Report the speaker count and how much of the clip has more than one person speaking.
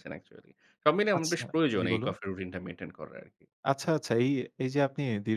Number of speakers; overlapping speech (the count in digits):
2, about 13%